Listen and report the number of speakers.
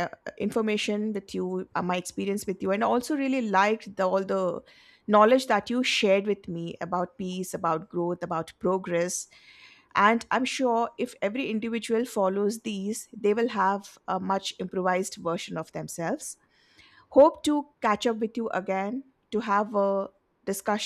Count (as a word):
one